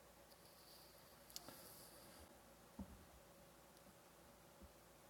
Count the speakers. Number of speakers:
0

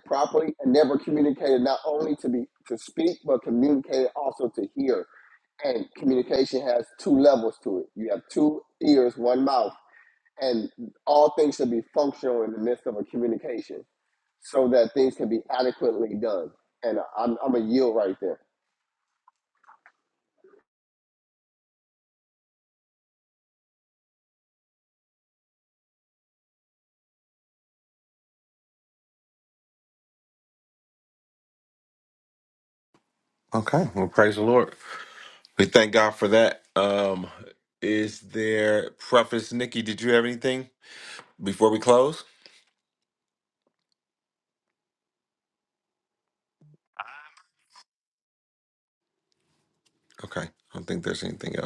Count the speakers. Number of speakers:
2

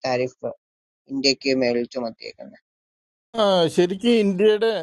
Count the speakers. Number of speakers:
2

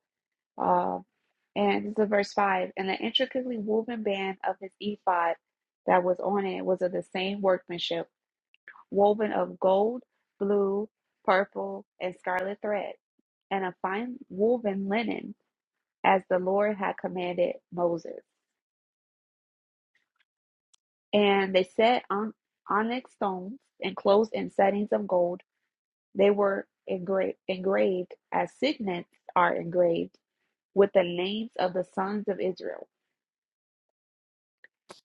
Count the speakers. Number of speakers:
1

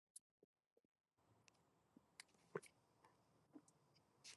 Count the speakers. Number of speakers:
0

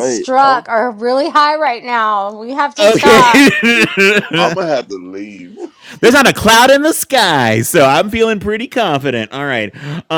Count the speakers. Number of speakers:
3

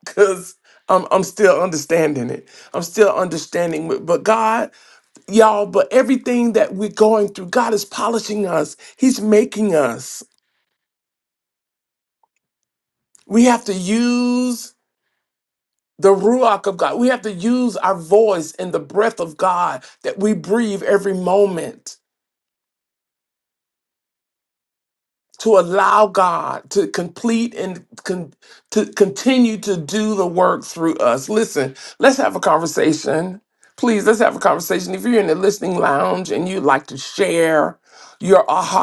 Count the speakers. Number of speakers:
1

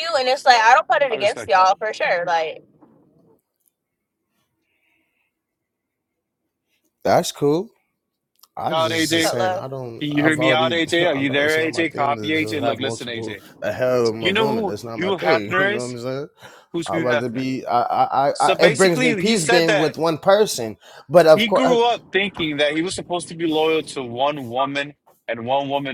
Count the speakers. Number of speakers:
3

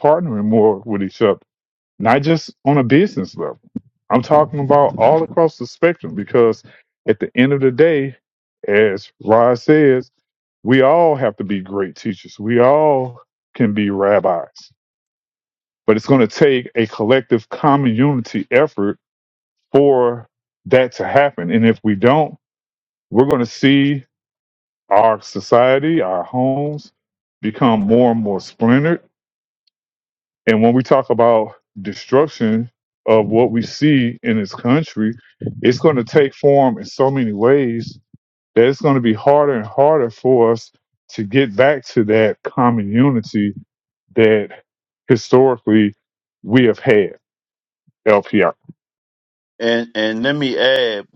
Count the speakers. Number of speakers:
2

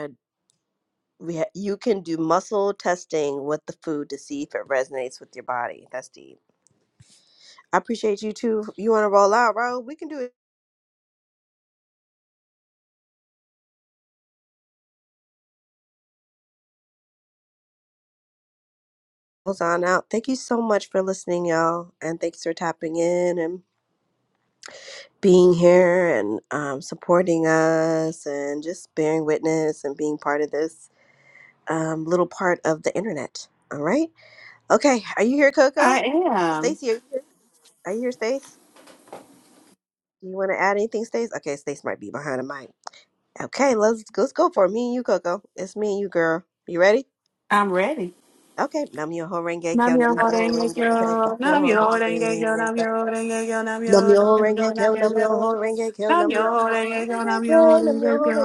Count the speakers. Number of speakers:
2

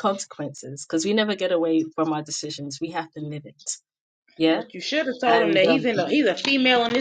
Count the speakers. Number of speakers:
2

